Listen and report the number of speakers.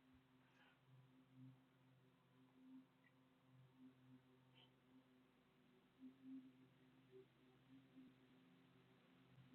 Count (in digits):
0